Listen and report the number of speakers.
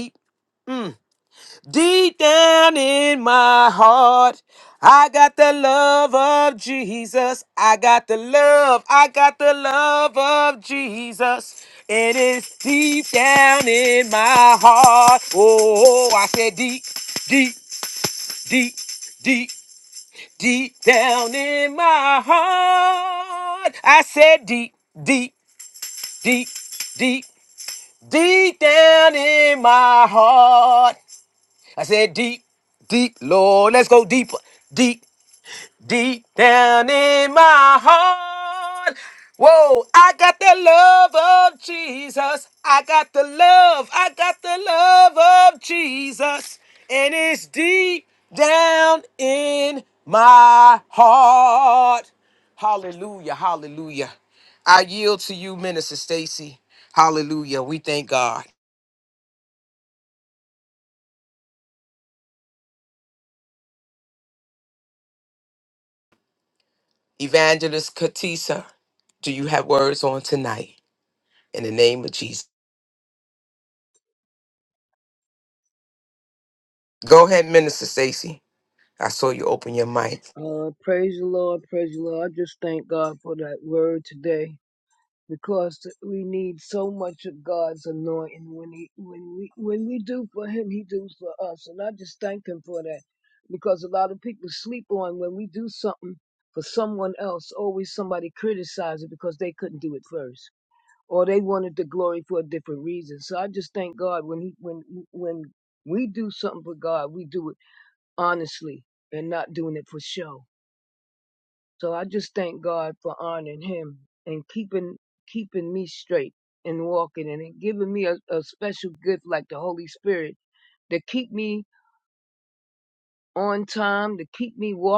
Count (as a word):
two